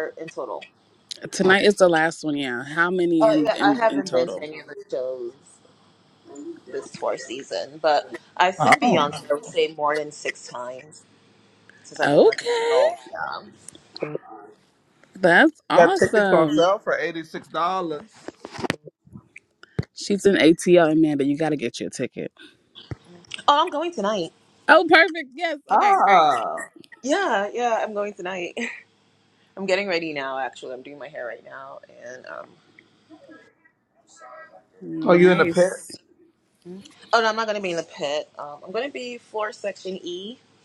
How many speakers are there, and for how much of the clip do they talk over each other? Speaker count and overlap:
3, about 11%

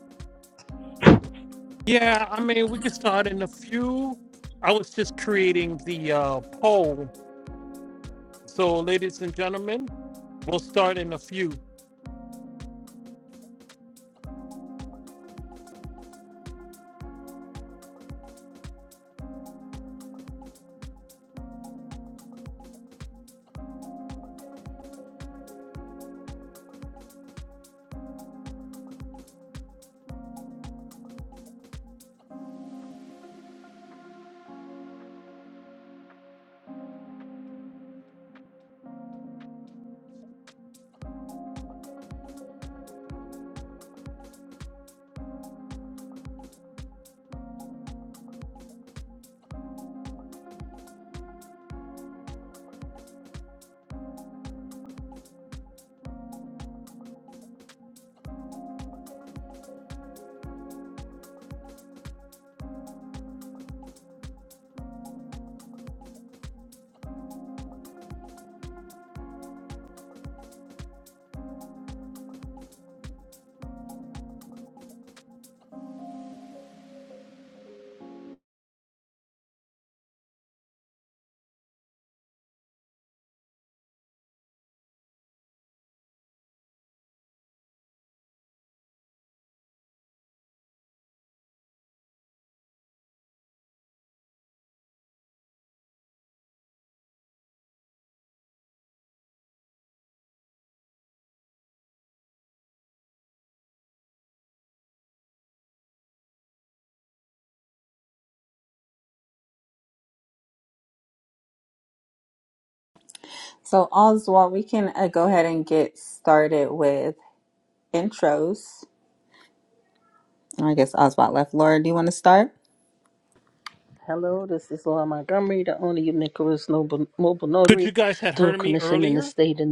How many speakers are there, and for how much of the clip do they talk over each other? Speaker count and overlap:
3, about 1%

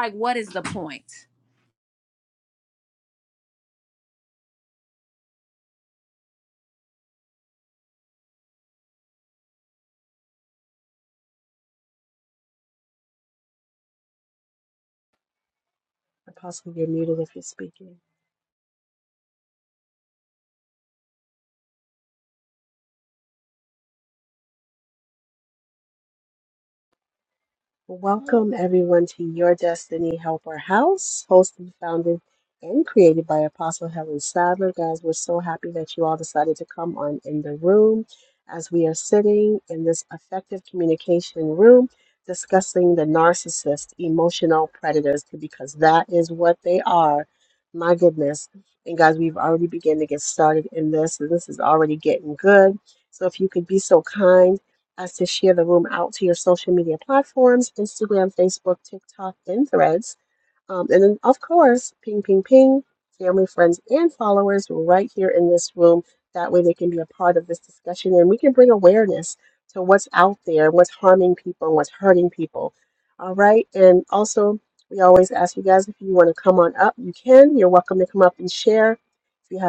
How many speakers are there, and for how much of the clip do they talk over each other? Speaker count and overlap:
2, no overlap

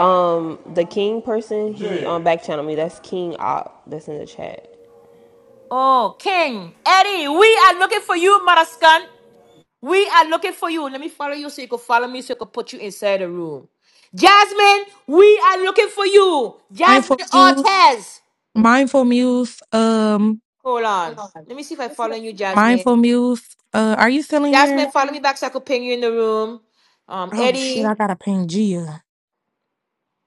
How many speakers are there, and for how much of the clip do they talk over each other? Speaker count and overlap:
3, about 7%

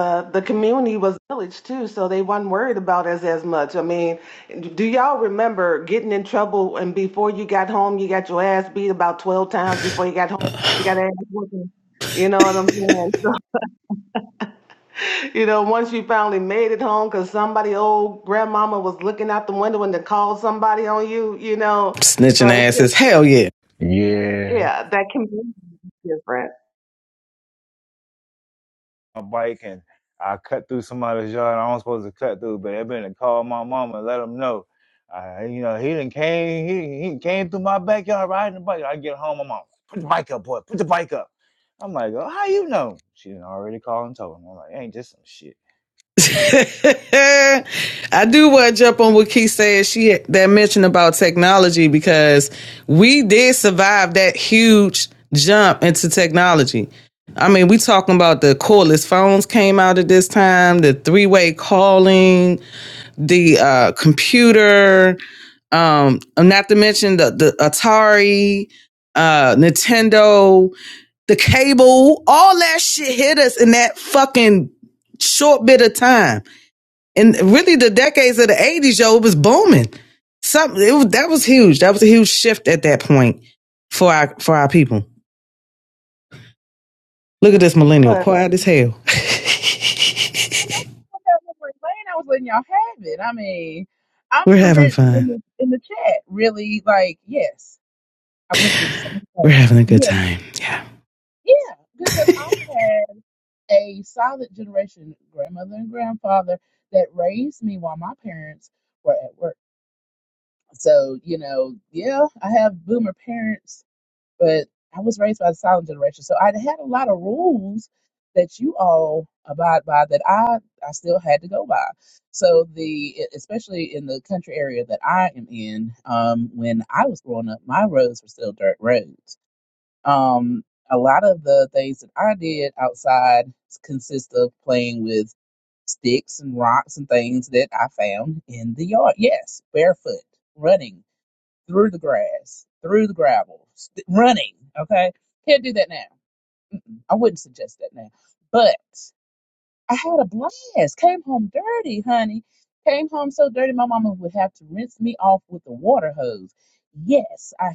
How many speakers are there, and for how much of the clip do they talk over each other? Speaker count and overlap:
4, about 2%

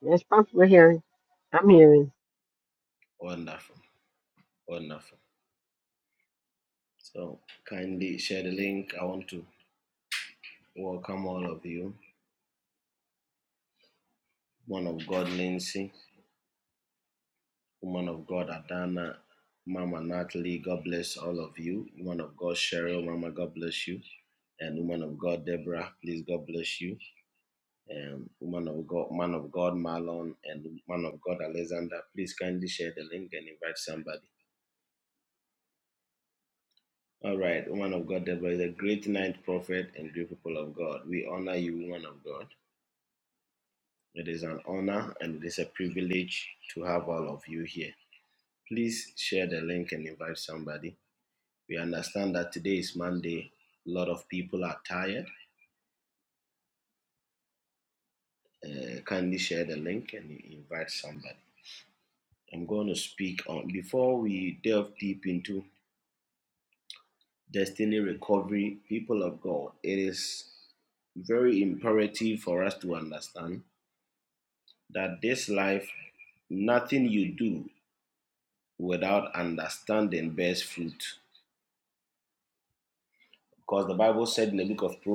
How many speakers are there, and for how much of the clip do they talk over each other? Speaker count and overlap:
2, no overlap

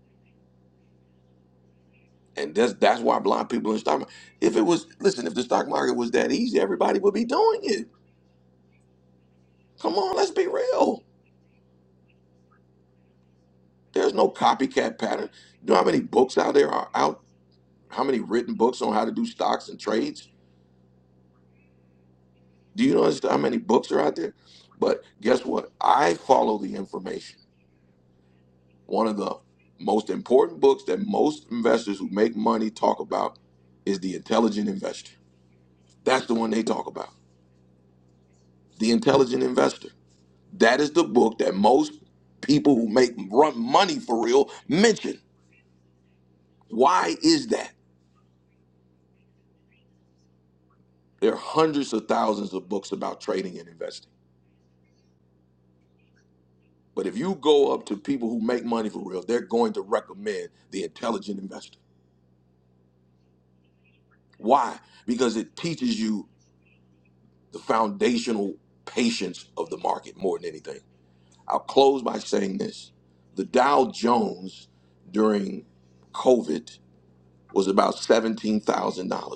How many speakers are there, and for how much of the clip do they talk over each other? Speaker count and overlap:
1, no overlap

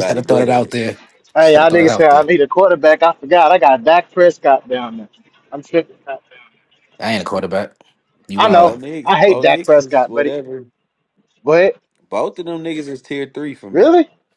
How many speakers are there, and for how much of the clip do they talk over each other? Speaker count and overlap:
3, about 24%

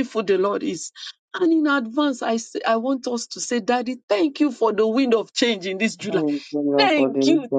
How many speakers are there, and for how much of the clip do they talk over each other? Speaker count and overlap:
2, about 12%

